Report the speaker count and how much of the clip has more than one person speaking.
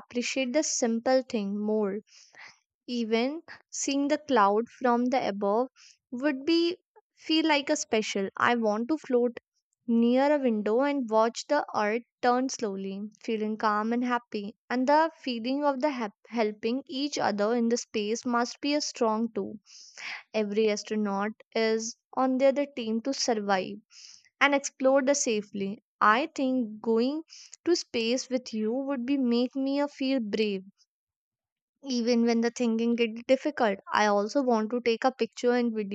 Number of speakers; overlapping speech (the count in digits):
1, no overlap